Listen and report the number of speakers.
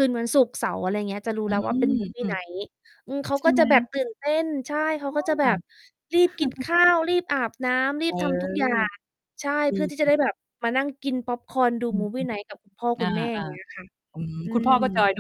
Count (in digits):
2